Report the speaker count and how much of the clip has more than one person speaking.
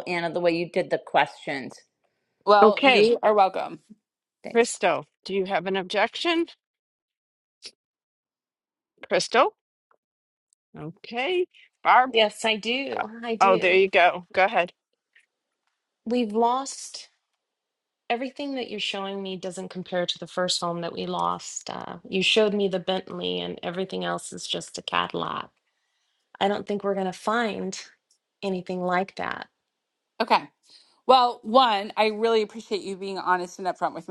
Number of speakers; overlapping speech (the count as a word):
four, about 3%